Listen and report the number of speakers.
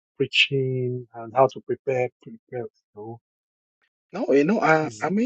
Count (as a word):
two